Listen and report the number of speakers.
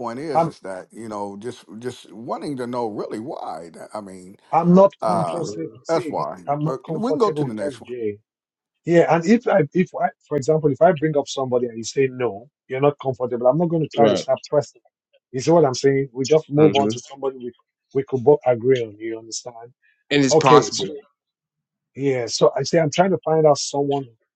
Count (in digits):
3